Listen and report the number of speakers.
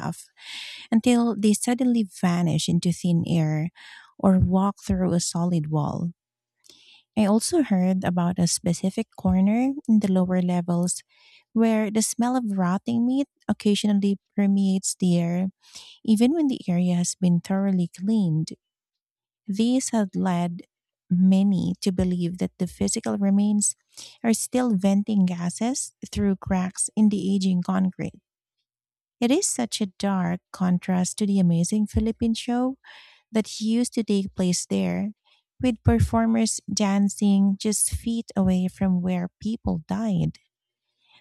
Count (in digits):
1